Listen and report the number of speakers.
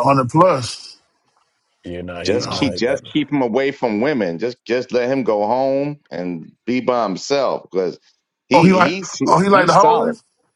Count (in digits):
3